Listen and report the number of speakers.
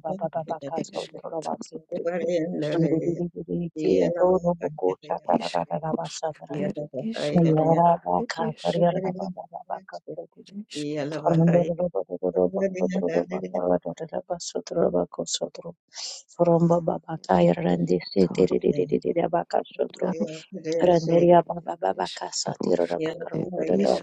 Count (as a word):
three